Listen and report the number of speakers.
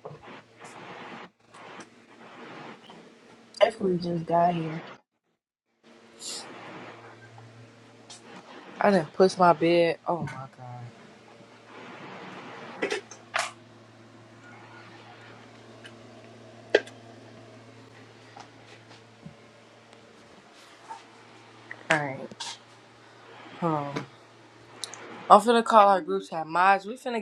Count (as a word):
two